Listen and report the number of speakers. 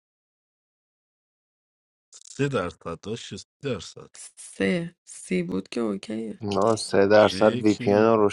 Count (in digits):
3